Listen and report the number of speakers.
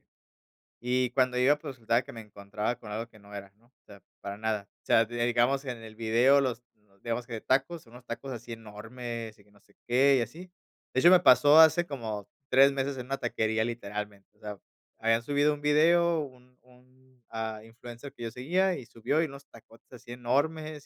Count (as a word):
one